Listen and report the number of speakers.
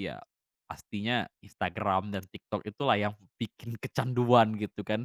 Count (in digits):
1